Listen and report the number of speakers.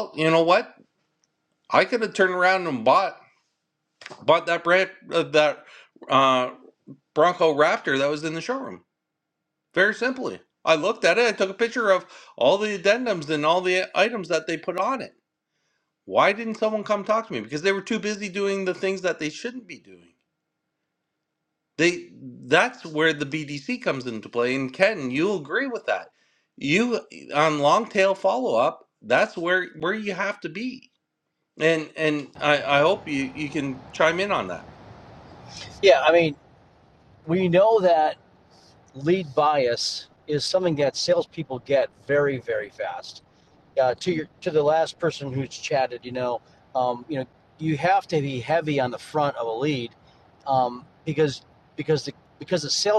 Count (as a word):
two